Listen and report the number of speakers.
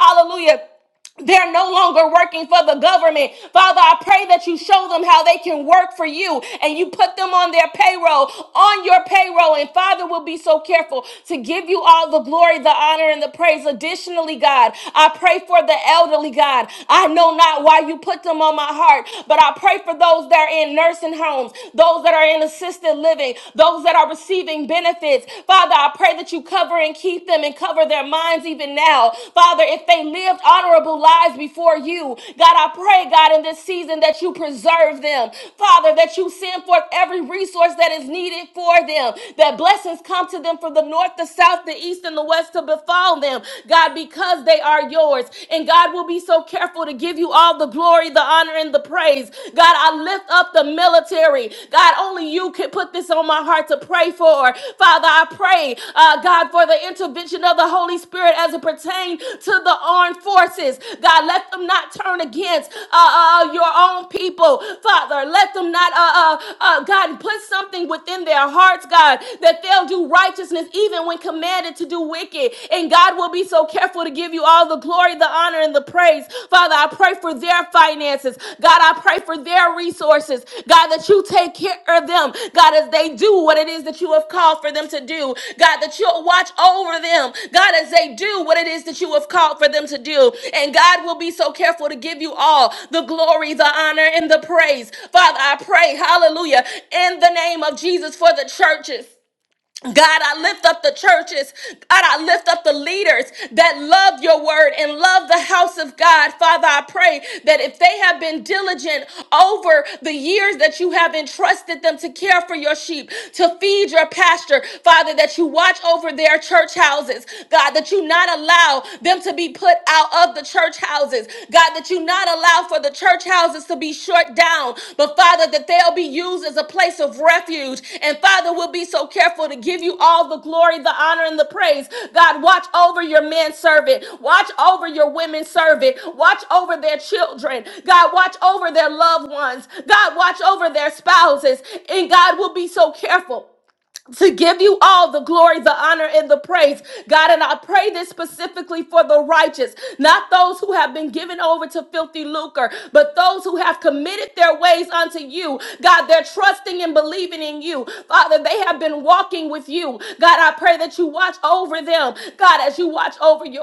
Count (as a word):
one